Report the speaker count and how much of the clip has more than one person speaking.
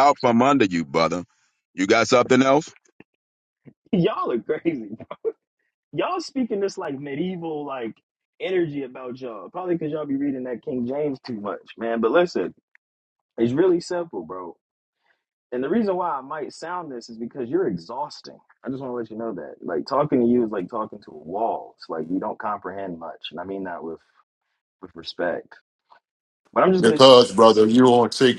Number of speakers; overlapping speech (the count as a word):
three, about 1%